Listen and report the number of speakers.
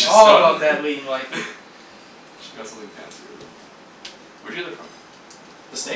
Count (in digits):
2